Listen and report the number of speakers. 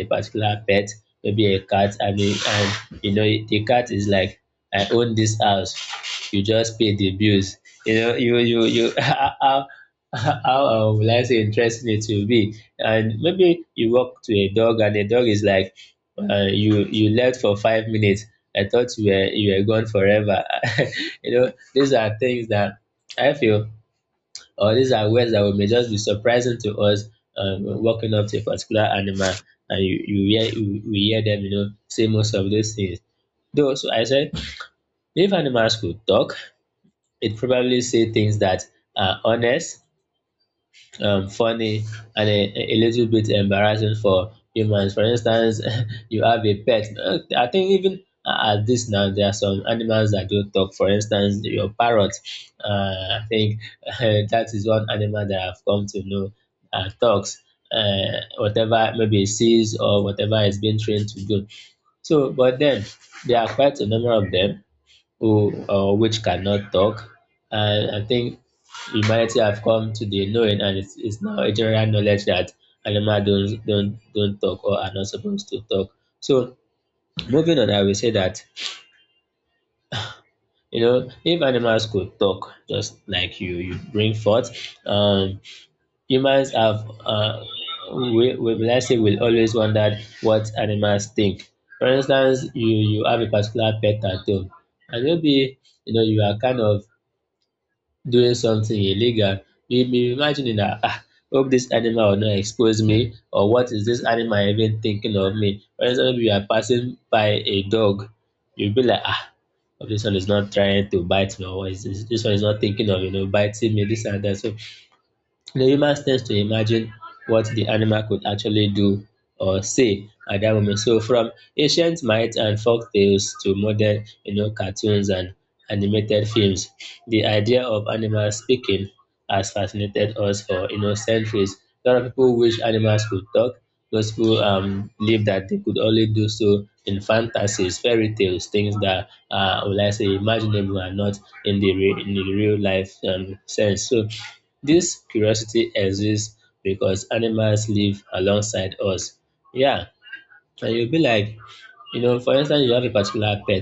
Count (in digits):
1